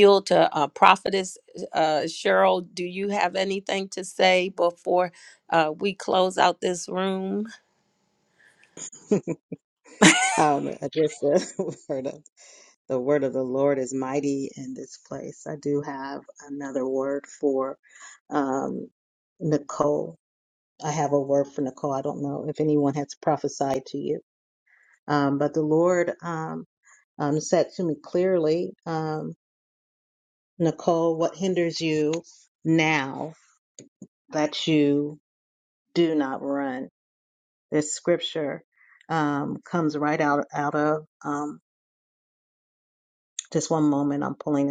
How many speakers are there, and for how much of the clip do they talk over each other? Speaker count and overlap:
2, no overlap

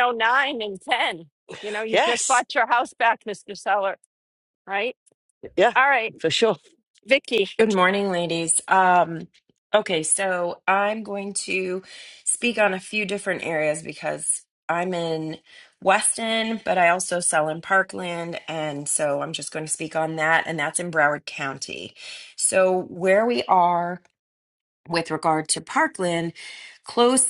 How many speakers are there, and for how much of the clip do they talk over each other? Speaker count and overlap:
3, about 2%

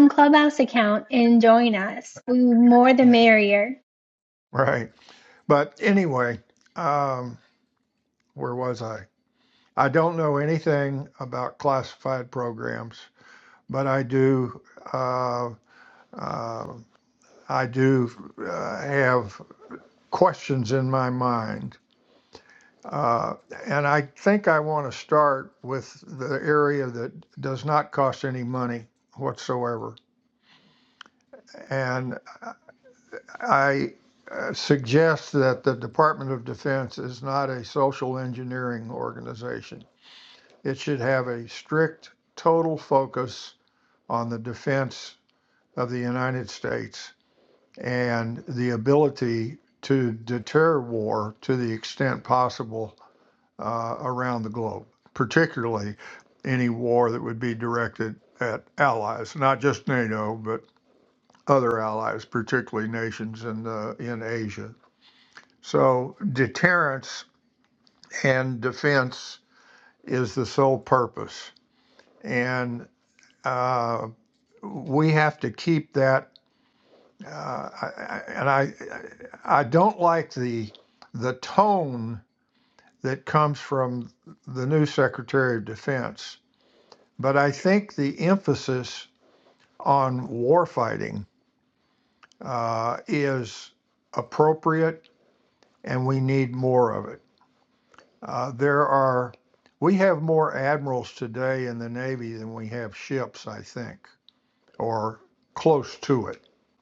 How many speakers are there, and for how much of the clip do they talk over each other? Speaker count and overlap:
2, no overlap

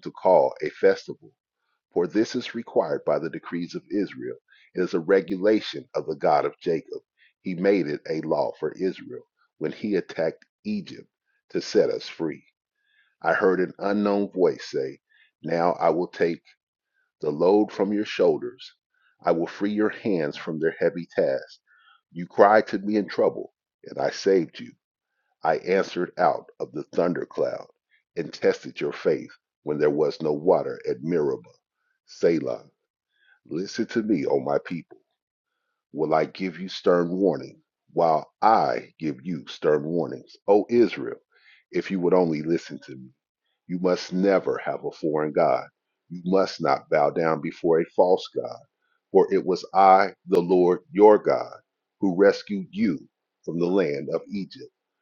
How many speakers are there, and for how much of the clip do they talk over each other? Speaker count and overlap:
1, no overlap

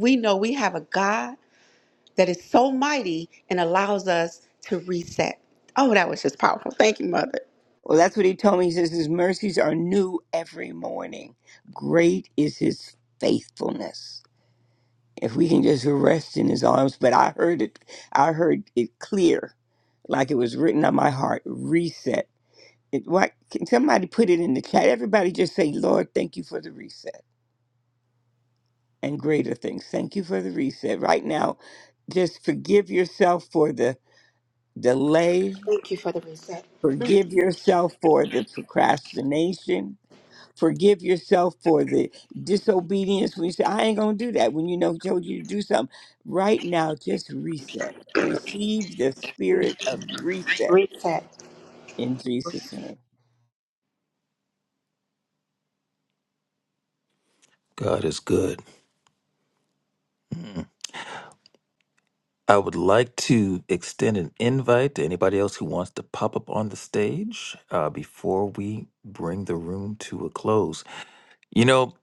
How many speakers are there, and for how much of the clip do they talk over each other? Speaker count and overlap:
3, under 1%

